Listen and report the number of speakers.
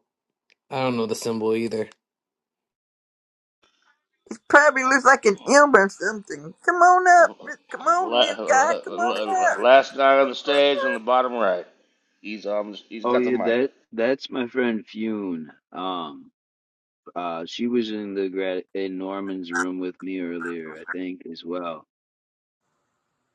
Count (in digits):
4